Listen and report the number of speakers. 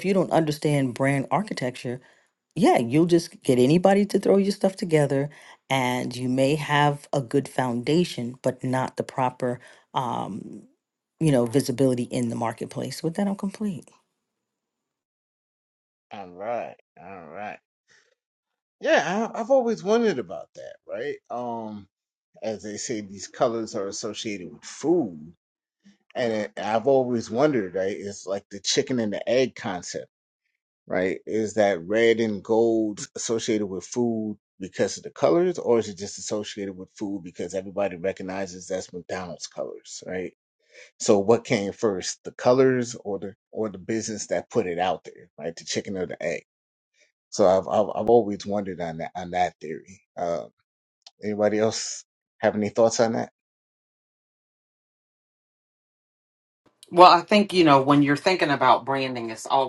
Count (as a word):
three